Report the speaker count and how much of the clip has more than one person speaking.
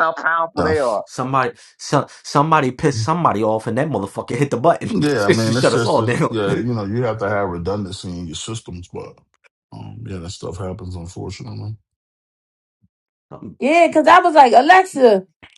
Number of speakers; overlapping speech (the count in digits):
4, about 9%